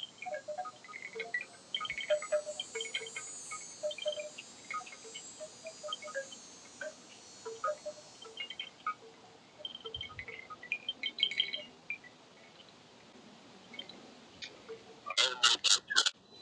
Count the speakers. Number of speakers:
0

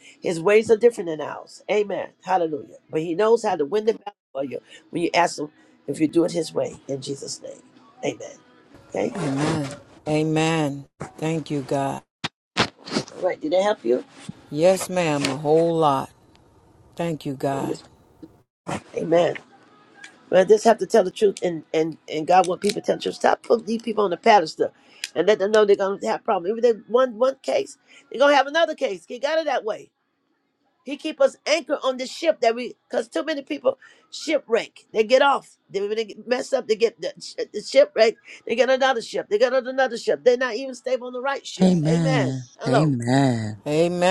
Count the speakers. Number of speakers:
3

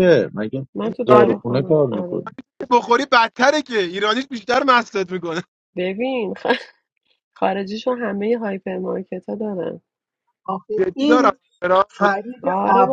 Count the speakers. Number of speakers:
4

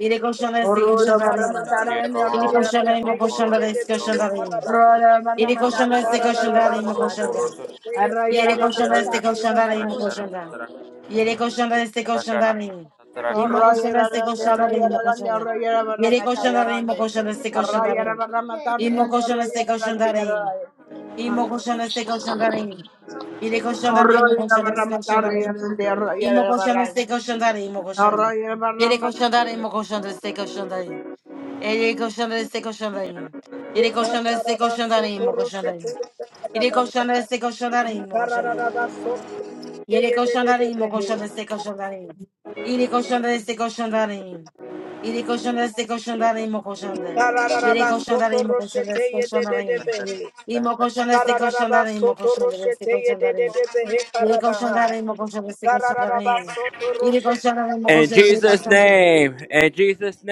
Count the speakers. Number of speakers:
4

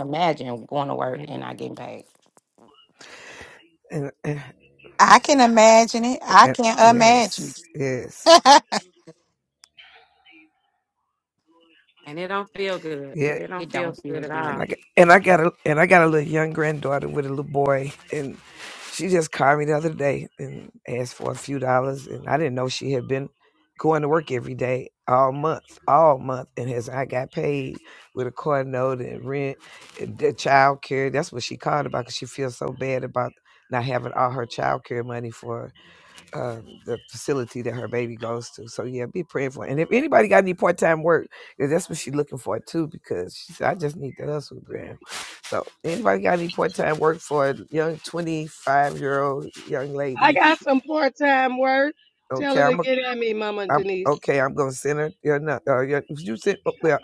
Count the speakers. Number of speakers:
5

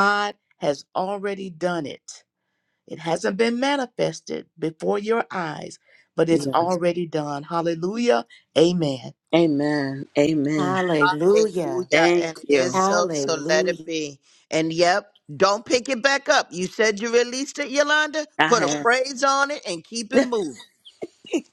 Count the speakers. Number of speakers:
4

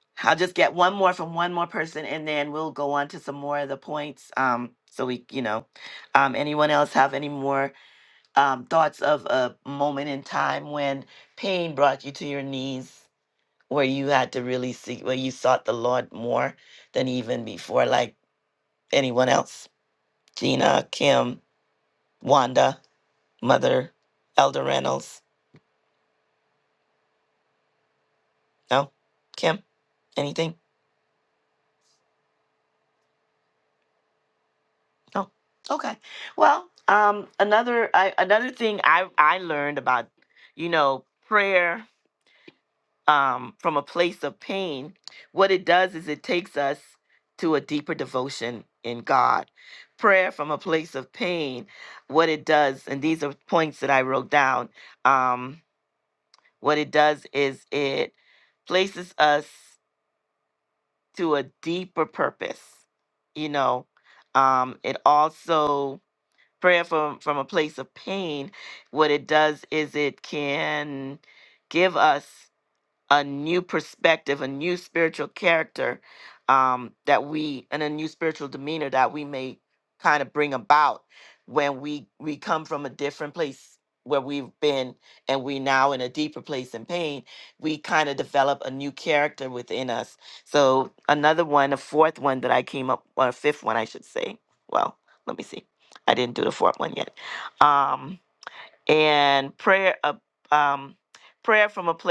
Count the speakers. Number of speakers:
1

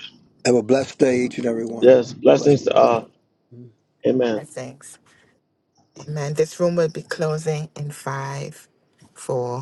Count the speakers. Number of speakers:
3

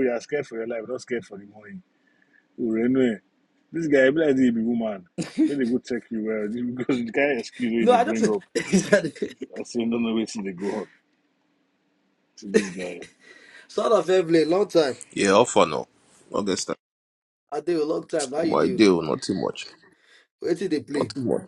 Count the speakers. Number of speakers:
3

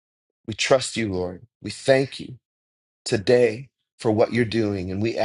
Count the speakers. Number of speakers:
1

